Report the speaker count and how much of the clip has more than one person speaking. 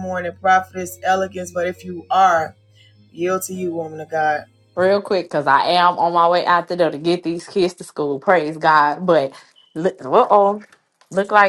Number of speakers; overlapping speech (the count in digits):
2, no overlap